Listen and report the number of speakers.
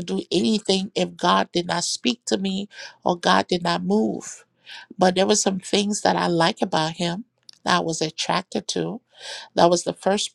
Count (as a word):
one